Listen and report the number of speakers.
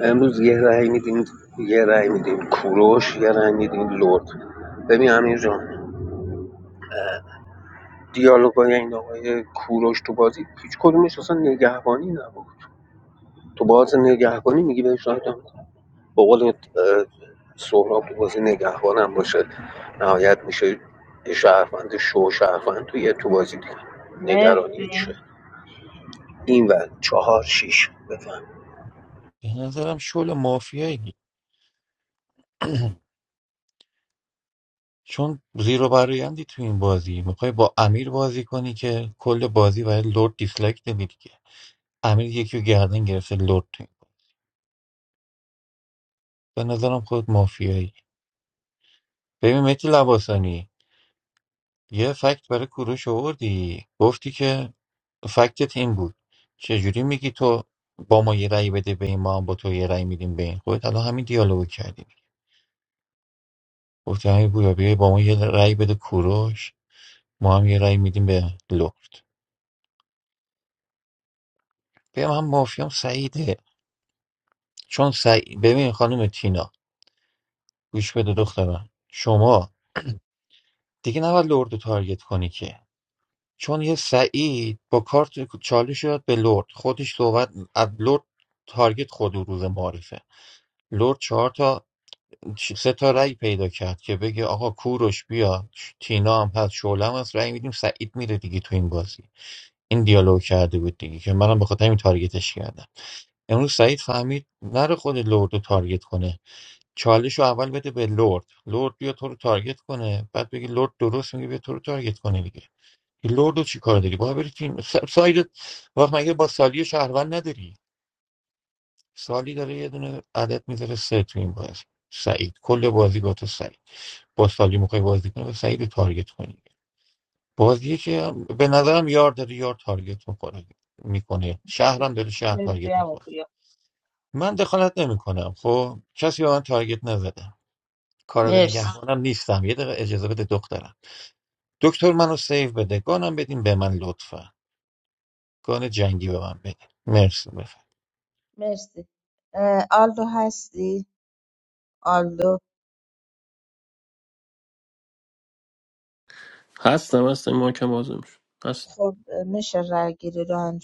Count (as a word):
four